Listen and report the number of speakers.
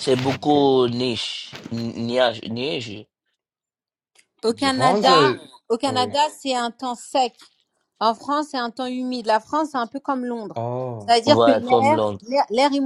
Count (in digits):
3